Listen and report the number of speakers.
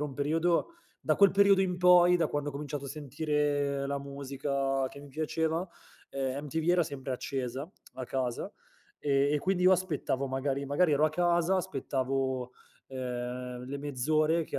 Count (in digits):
1